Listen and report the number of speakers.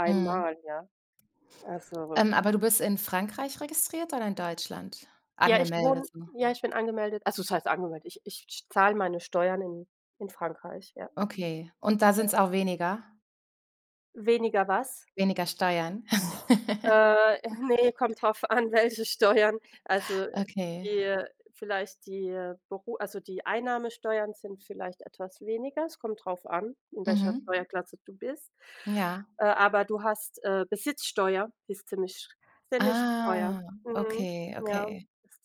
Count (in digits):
2